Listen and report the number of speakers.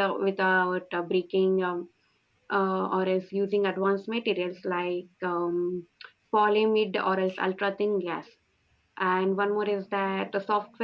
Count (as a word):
one